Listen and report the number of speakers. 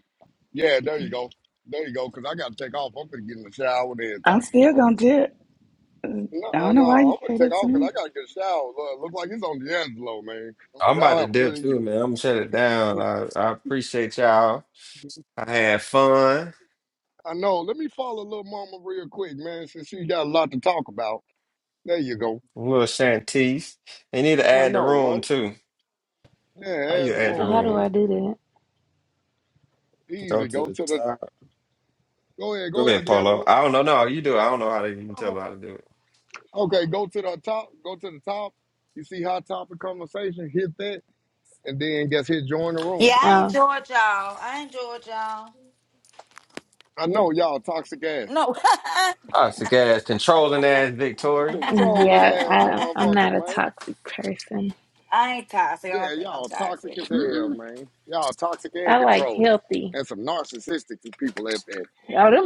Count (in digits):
5